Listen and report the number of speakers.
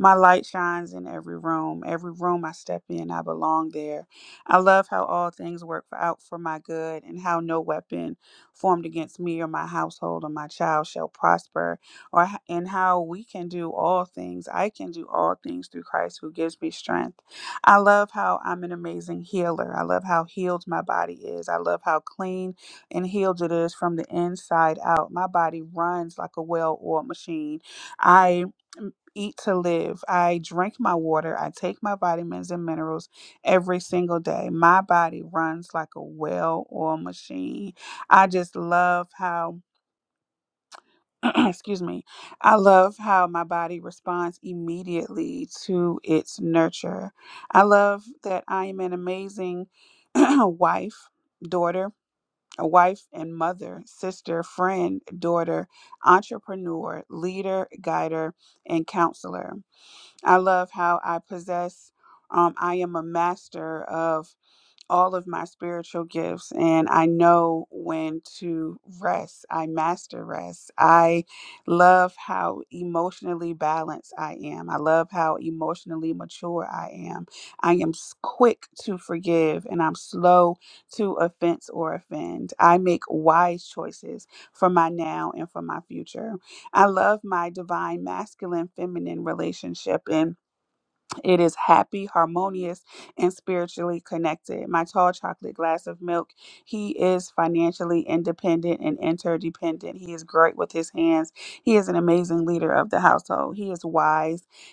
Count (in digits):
1